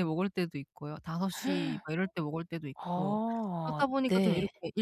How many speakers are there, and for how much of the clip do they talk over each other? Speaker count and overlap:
2, about 26%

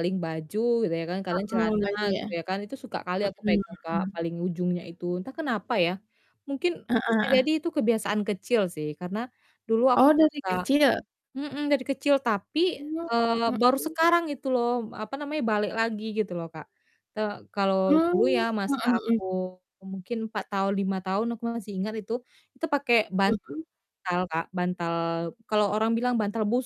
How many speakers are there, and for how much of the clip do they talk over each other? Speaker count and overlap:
2, about 19%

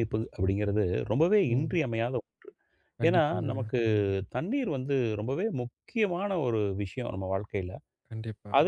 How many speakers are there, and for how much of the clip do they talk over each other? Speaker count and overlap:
2, about 10%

